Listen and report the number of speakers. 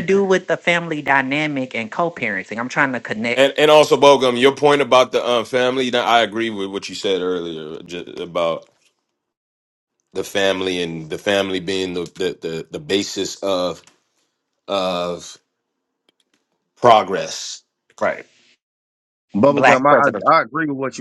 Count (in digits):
3